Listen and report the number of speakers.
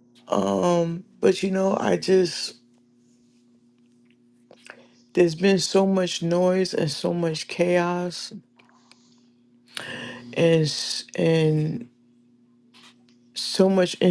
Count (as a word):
one